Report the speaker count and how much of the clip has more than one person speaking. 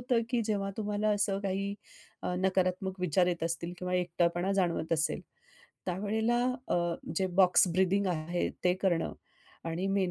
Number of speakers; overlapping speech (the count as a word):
one, no overlap